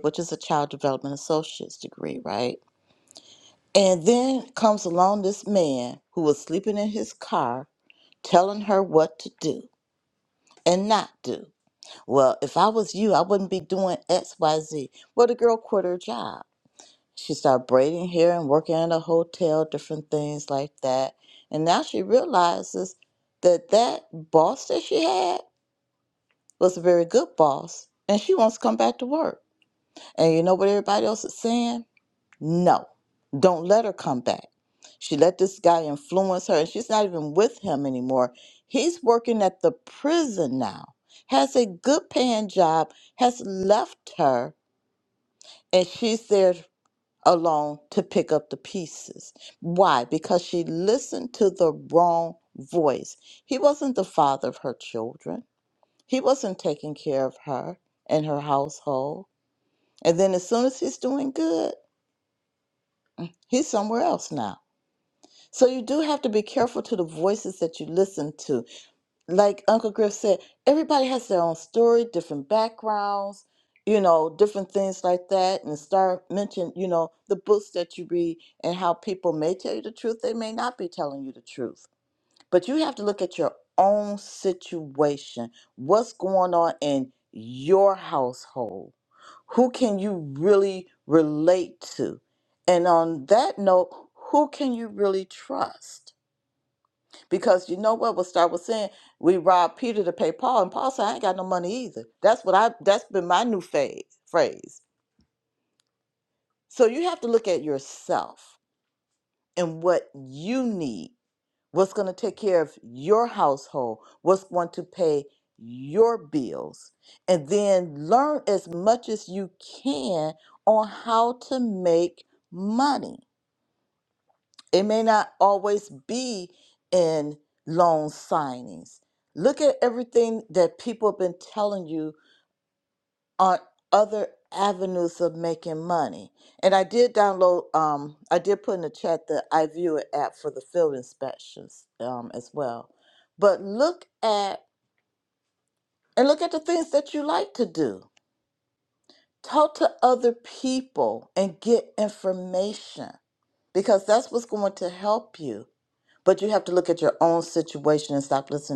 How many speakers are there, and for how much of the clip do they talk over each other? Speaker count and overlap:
one, no overlap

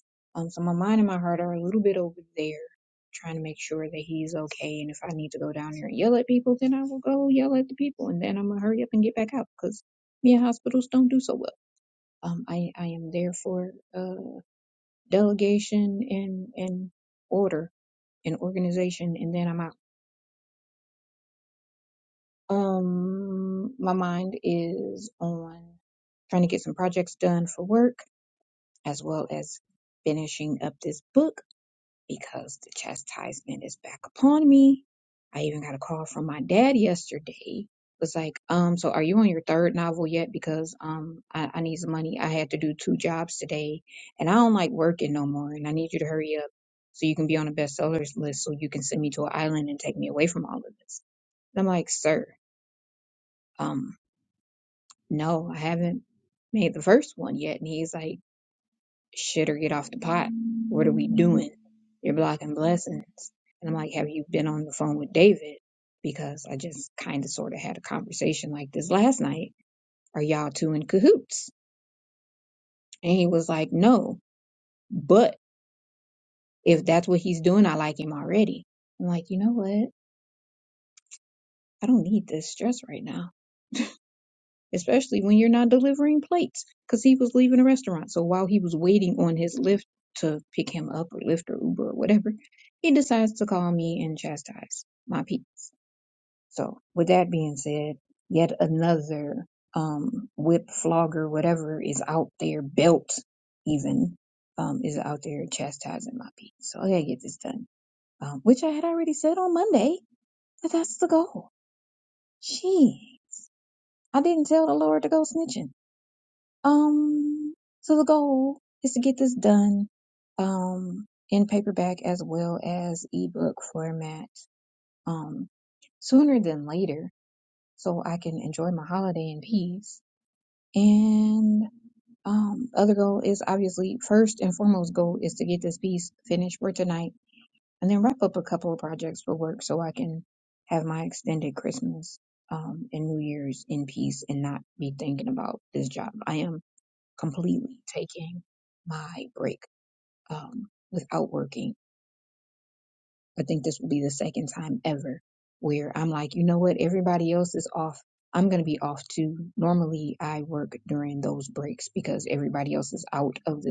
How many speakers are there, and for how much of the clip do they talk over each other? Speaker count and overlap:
one, no overlap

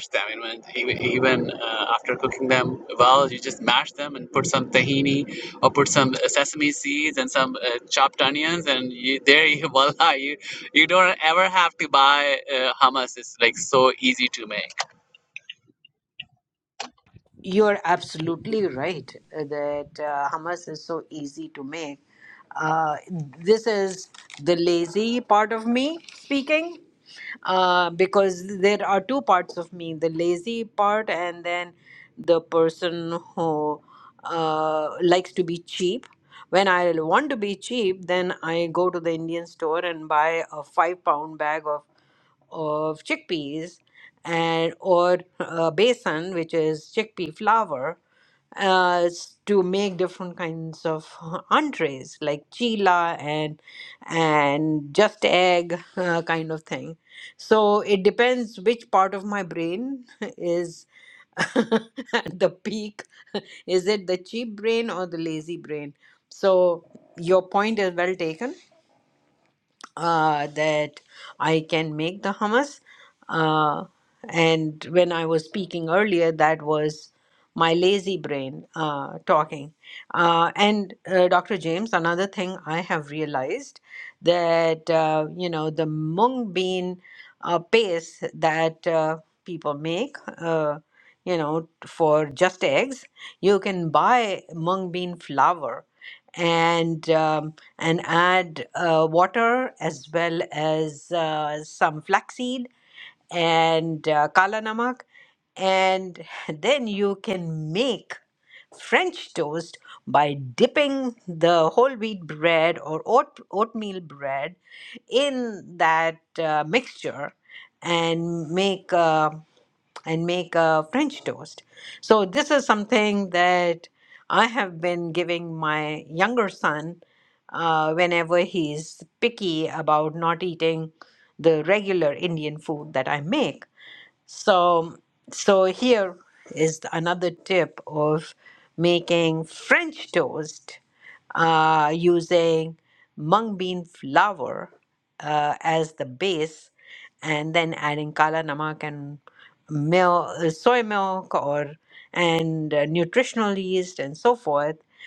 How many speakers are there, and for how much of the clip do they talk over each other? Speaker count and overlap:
two, no overlap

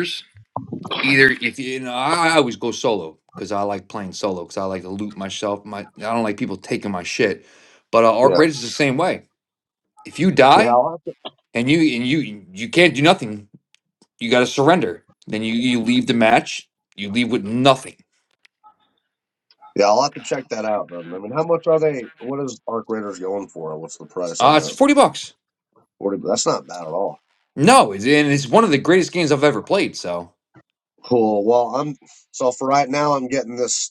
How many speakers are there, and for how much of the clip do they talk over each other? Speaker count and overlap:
two, about 2%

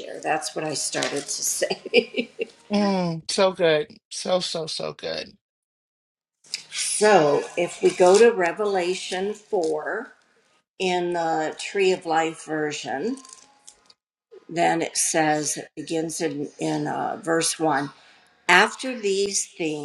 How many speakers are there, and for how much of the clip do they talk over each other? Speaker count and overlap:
two, no overlap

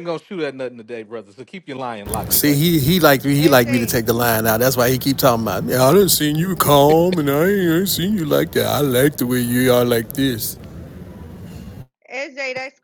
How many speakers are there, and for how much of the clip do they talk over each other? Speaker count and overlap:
three, about 7%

